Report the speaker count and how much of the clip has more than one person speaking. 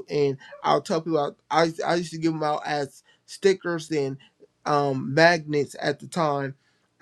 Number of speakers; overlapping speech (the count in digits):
1, no overlap